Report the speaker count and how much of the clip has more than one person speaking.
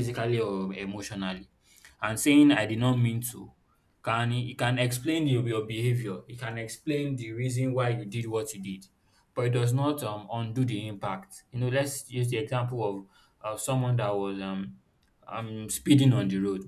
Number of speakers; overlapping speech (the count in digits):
1, no overlap